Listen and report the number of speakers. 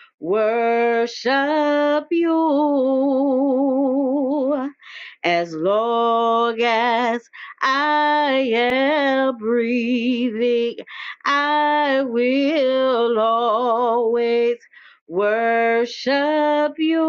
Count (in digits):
1